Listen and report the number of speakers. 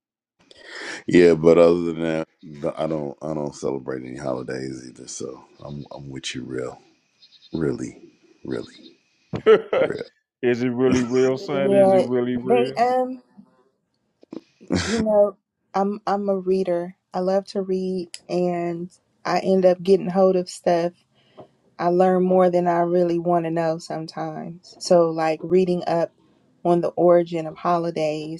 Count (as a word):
three